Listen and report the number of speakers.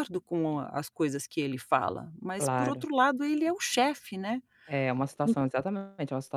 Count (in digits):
2